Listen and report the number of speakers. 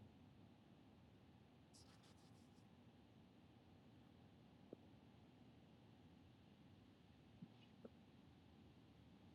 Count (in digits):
0